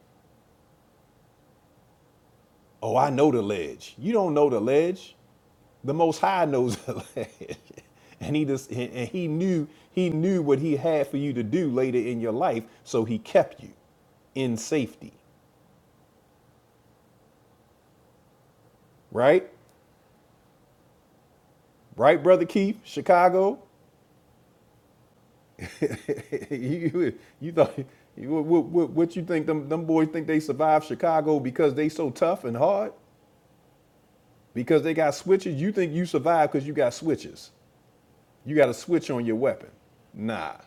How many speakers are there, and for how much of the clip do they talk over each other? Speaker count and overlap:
1, no overlap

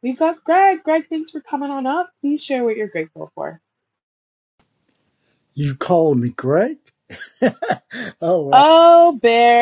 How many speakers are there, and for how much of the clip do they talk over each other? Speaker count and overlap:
2, about 1%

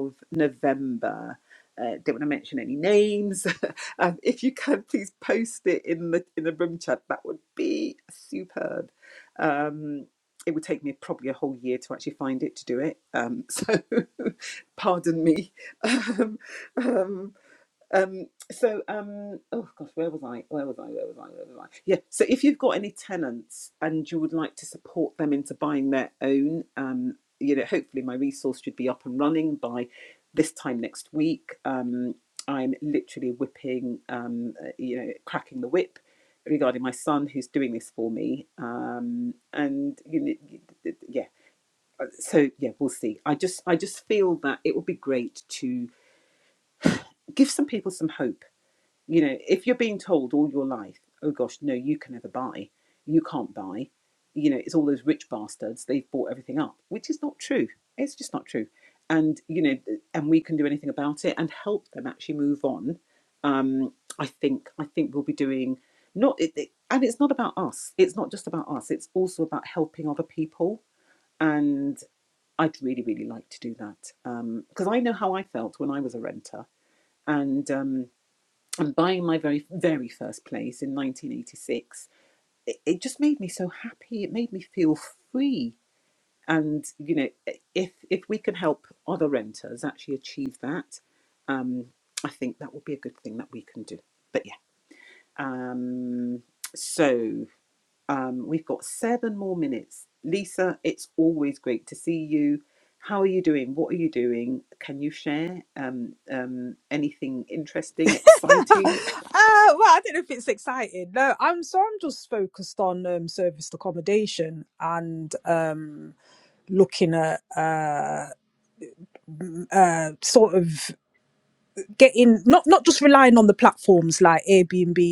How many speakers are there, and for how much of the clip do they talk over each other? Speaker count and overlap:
2, no overlap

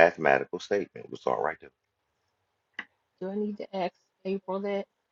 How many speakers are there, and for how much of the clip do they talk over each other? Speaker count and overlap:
2, no overlap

